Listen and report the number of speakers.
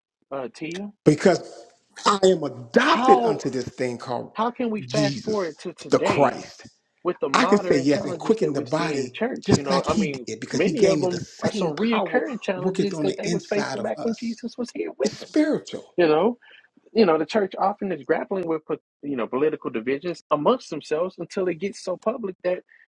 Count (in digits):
2